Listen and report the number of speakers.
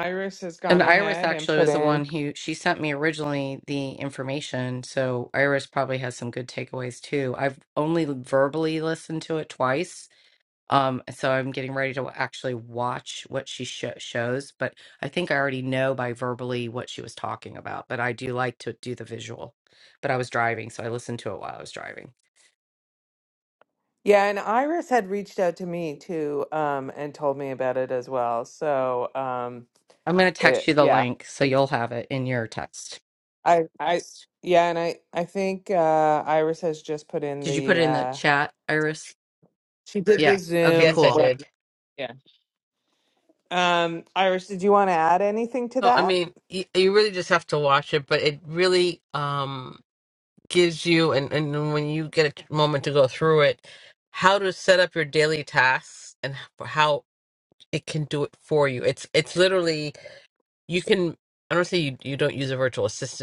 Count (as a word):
three